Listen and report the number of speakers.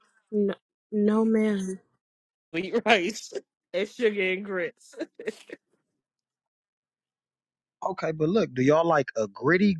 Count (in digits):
3